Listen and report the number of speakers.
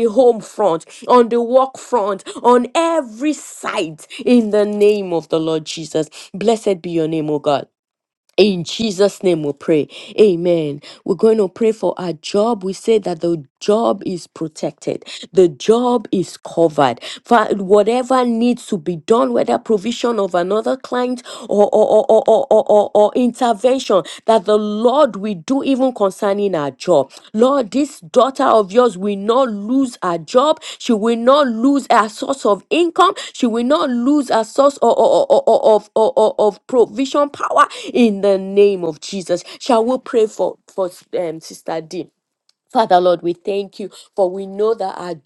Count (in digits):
1